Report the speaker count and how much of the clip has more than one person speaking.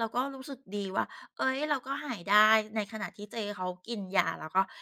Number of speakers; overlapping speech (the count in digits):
1, no overlap